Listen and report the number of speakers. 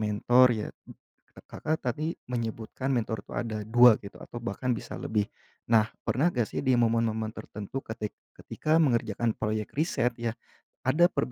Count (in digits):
1